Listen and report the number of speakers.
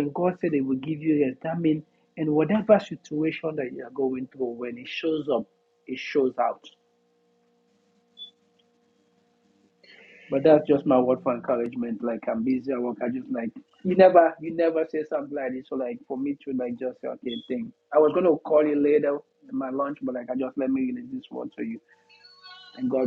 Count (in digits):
1